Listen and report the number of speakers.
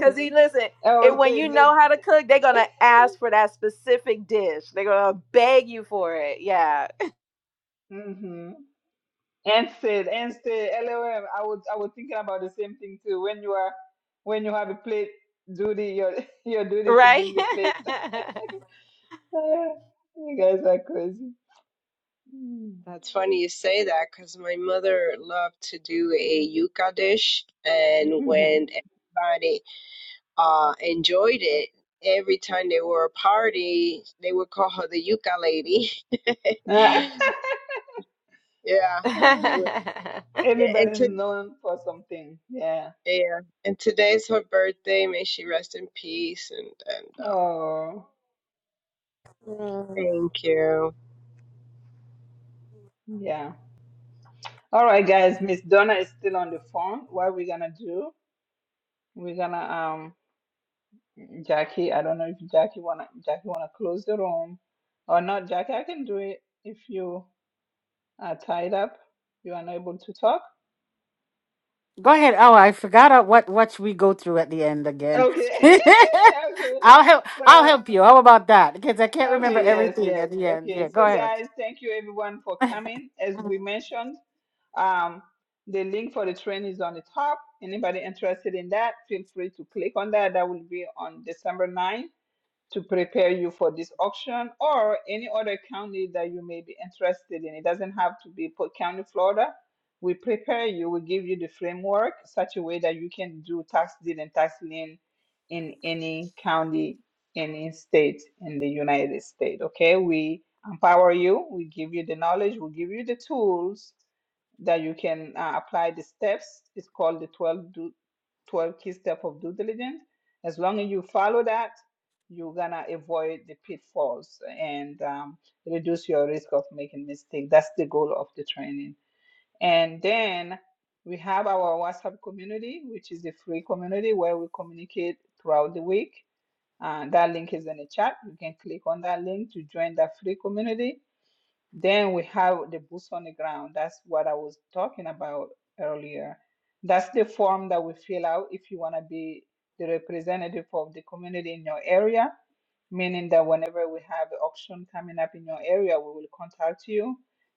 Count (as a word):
four